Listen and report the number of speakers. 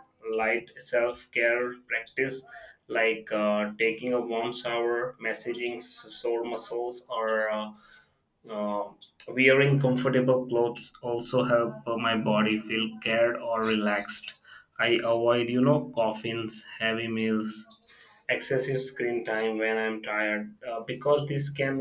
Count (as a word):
one